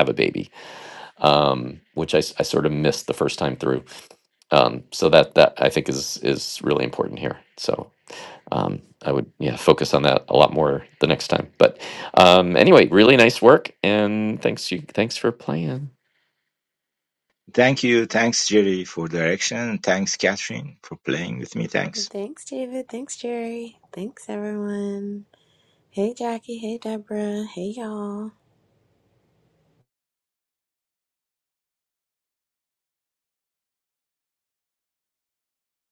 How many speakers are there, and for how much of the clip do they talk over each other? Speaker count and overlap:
3, no overlap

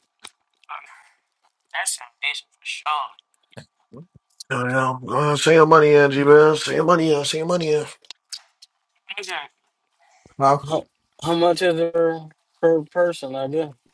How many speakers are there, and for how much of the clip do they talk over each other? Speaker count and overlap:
3, no overlap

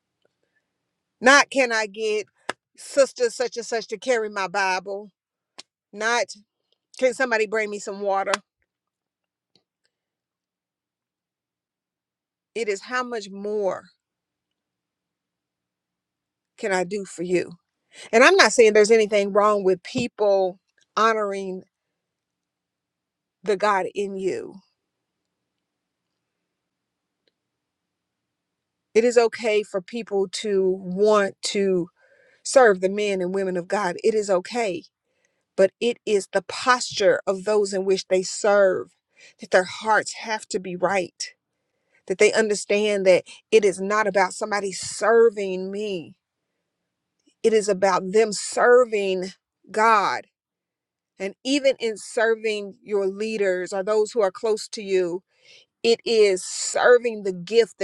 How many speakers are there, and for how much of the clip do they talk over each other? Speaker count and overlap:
1, no overlap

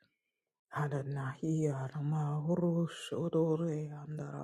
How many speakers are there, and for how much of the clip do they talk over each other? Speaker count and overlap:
1, no overlap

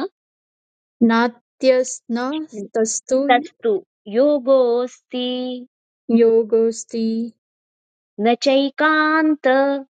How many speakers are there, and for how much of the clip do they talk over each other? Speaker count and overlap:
2, no overlap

